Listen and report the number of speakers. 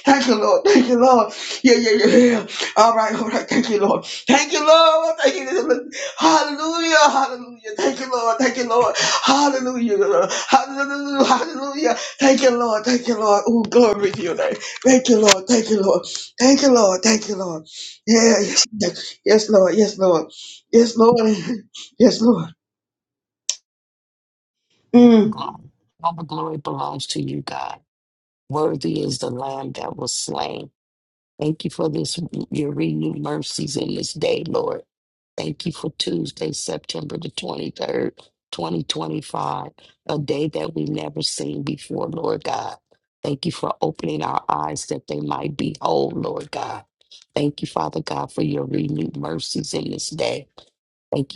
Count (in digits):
2